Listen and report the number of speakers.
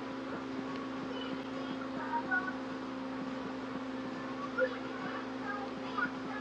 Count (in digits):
0